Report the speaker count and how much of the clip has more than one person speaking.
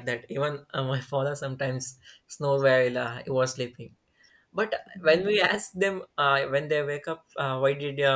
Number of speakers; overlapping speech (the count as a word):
one, no overlap